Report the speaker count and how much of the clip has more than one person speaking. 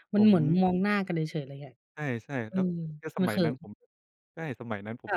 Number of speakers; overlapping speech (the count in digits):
2, about 20%